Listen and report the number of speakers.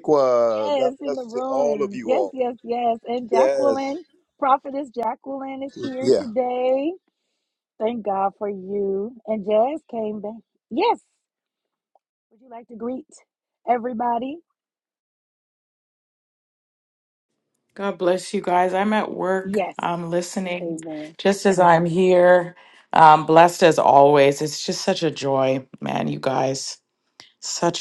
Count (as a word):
three